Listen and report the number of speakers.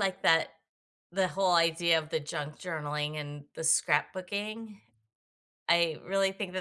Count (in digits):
1